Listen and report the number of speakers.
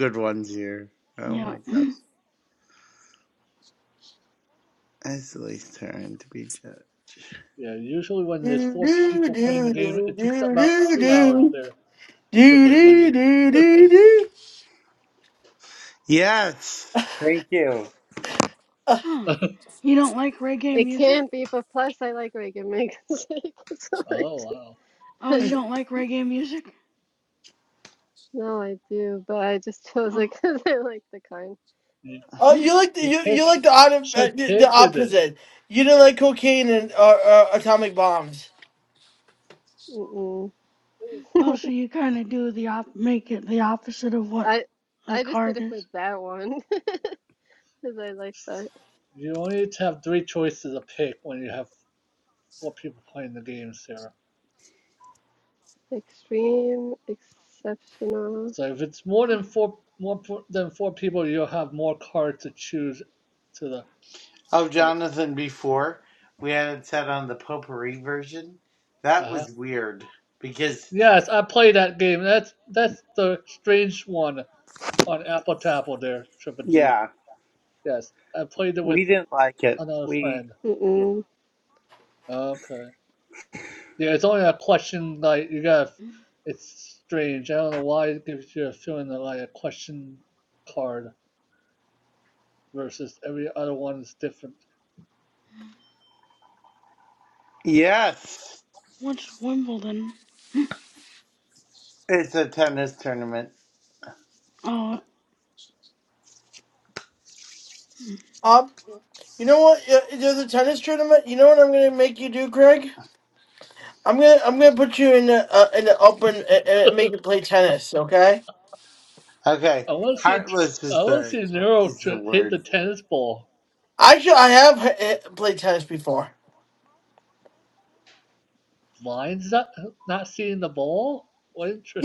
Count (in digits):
5